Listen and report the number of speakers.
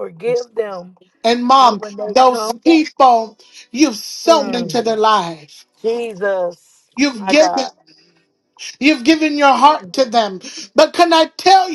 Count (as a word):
two